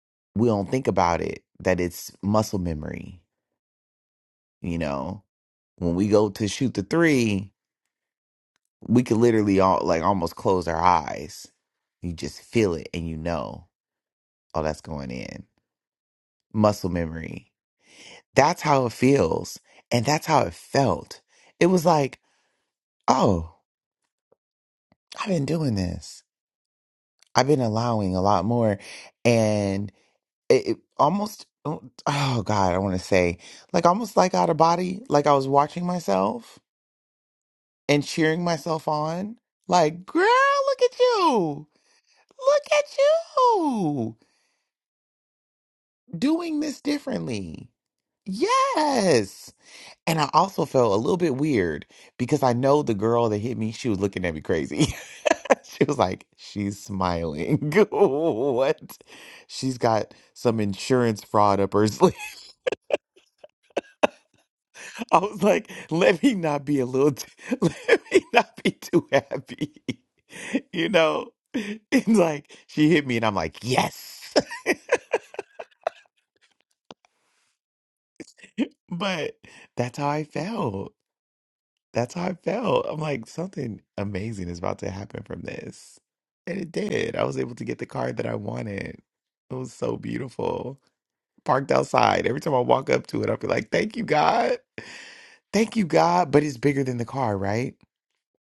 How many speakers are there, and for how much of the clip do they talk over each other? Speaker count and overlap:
one, no overlap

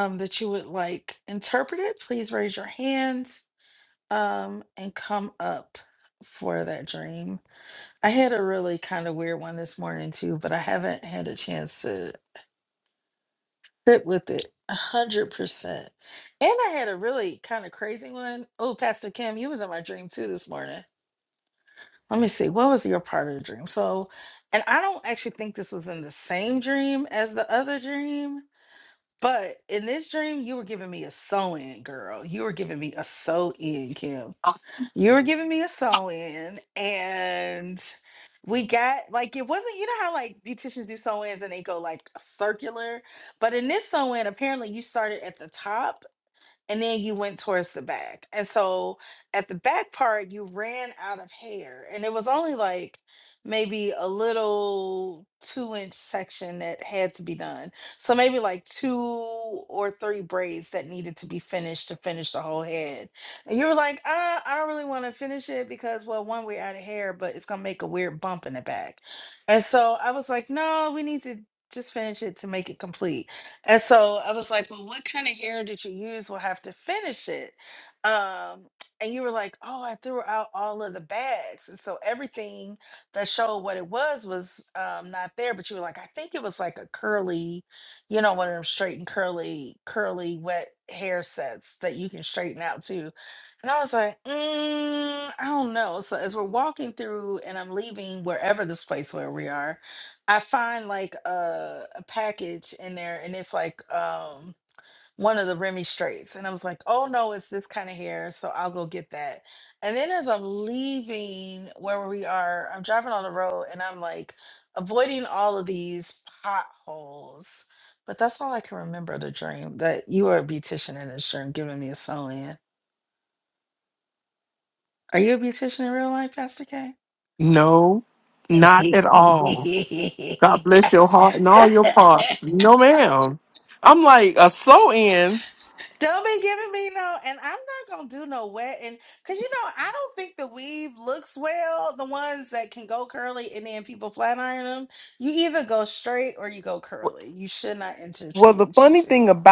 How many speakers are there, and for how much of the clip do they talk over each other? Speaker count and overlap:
two, about 1%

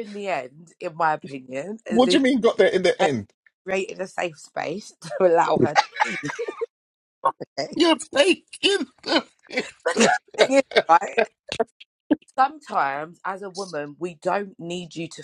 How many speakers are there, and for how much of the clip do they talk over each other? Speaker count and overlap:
two, about 3%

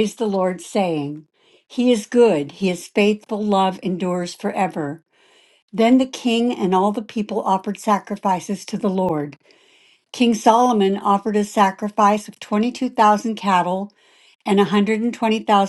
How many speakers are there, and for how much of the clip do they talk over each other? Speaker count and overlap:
one, no overlap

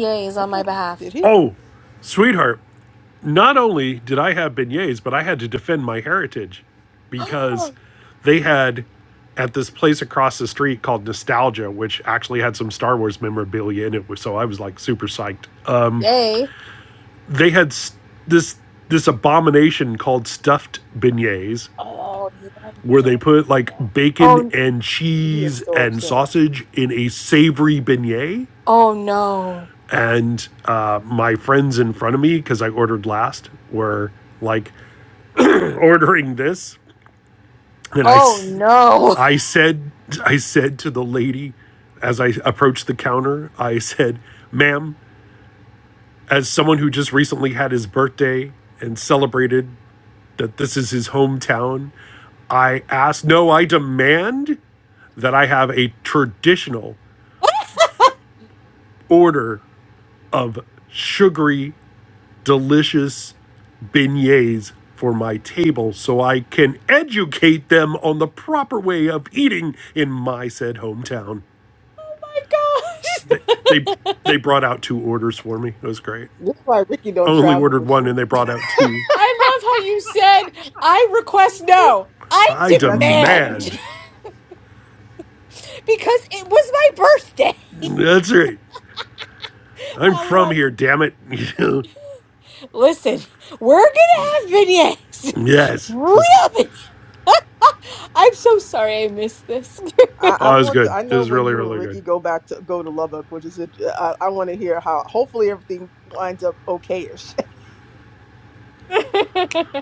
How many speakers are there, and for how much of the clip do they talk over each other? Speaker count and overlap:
three, about 7%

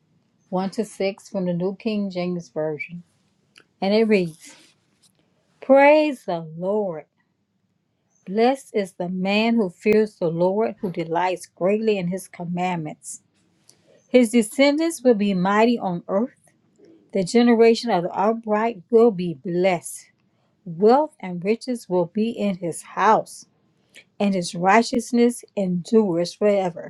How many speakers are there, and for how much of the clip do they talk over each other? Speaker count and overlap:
one, no overlap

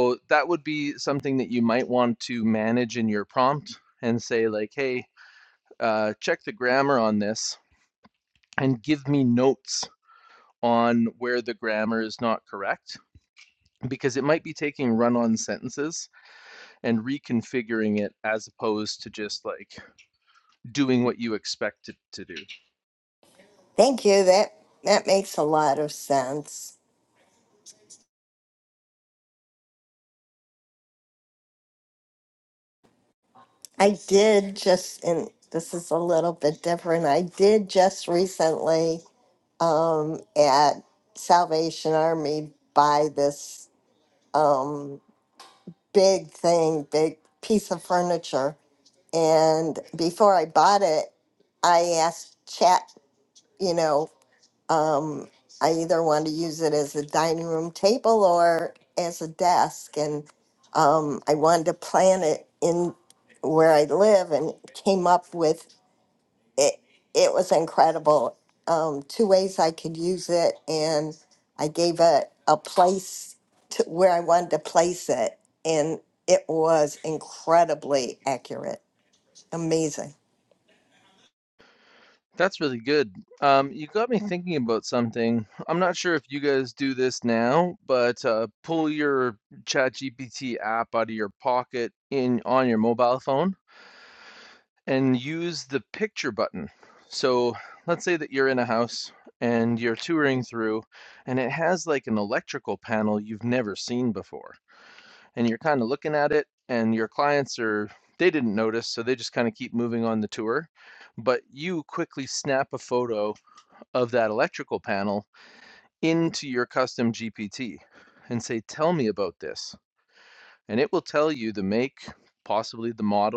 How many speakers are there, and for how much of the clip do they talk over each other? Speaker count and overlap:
two, no overlap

